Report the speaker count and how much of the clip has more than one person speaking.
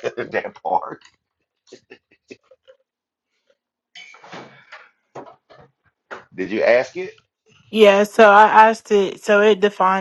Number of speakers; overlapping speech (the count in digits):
2, no overlap